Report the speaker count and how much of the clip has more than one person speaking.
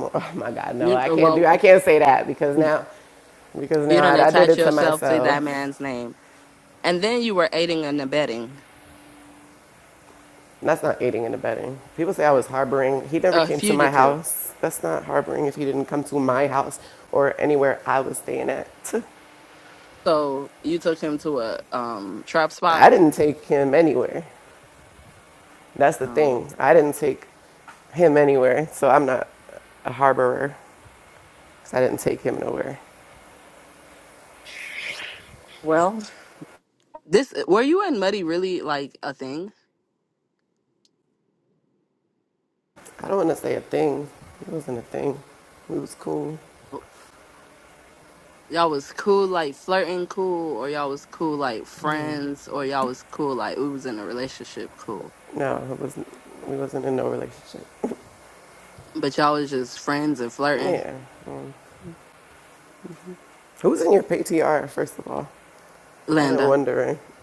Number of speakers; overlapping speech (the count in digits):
2, about 6%